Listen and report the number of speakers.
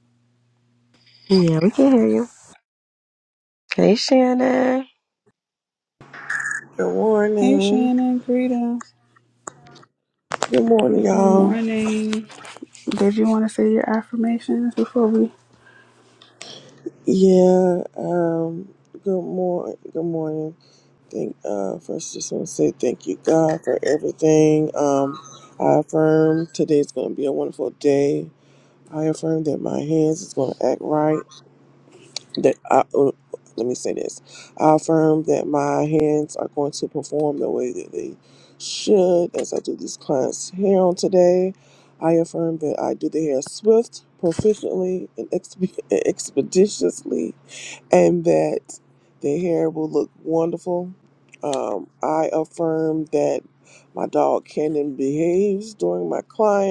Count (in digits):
3